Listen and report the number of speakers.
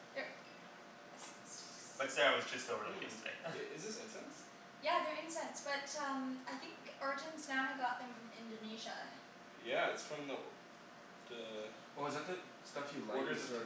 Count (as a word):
four